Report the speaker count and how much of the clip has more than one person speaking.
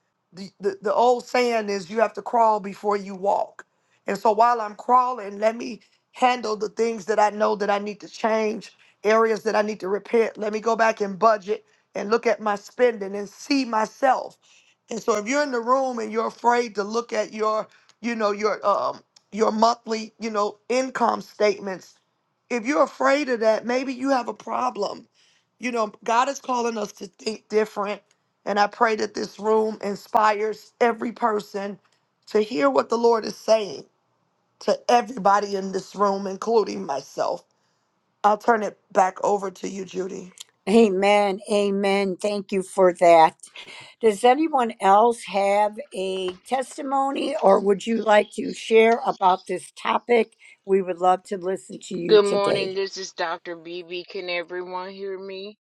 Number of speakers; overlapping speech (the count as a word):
three, about 1%